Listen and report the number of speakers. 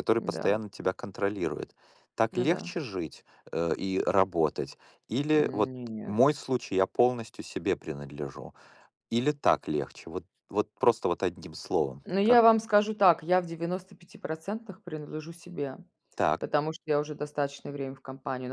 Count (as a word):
two